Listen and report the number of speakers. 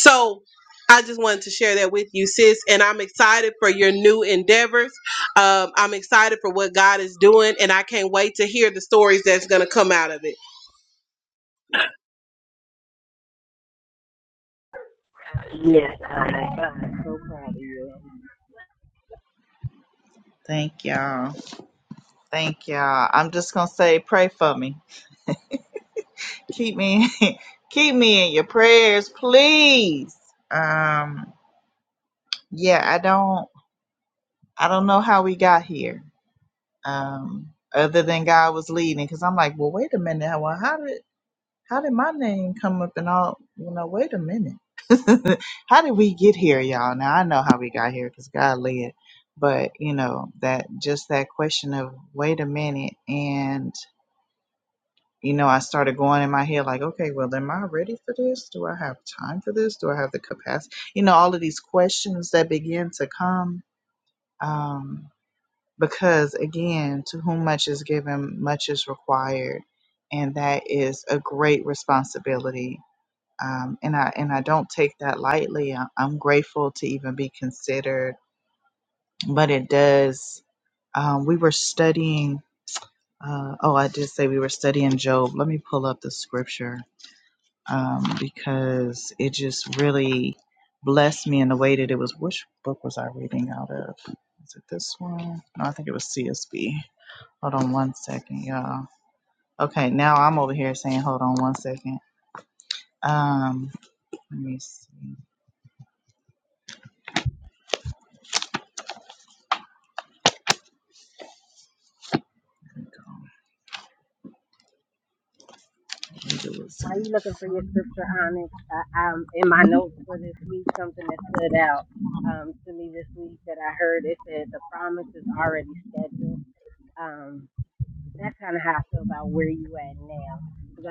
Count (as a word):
three